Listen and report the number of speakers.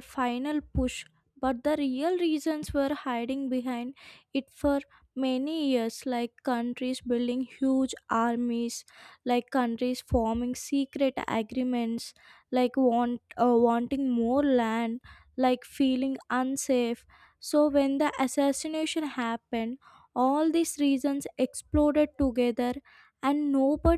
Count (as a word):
one